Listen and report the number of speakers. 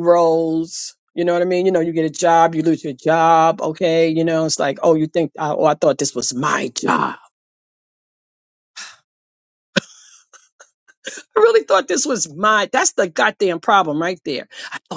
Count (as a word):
one